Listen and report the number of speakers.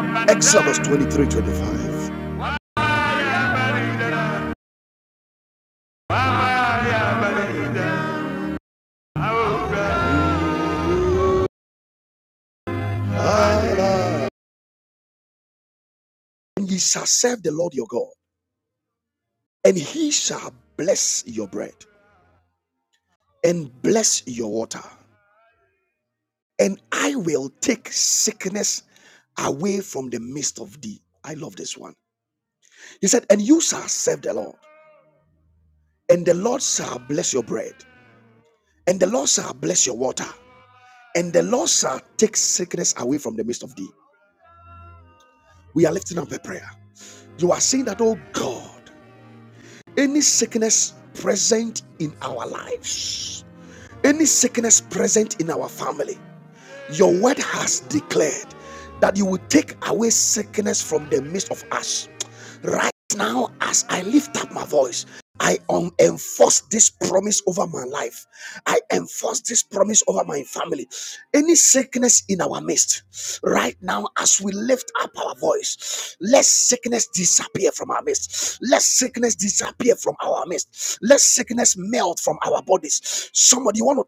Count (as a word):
one